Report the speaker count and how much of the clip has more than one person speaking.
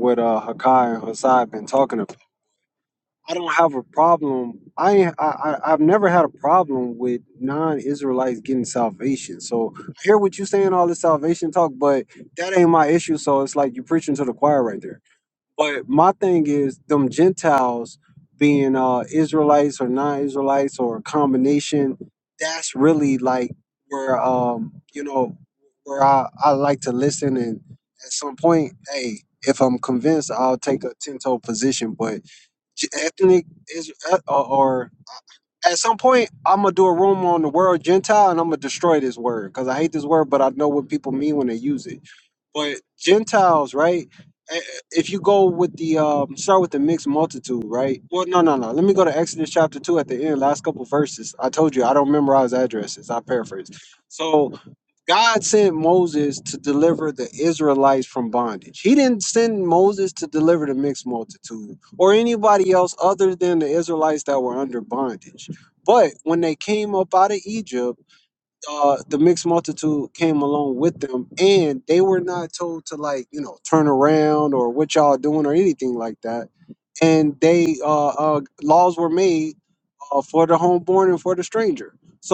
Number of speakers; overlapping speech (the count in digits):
1, no overlap